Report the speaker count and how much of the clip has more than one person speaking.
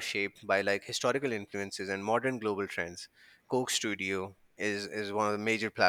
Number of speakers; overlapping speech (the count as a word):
one, no overlap